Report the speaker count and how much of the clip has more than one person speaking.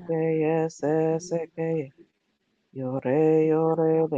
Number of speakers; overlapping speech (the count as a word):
two, about 48%